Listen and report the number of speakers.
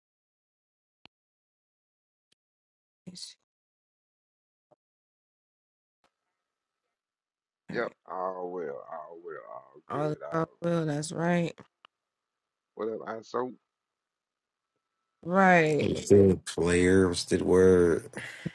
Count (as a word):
three